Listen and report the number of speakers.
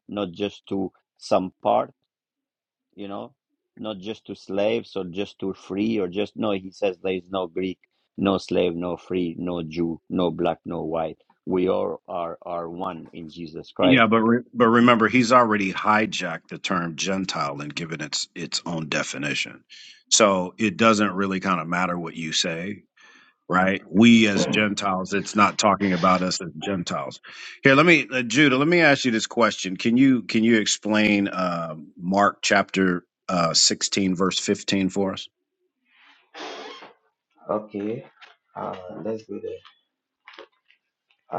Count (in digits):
3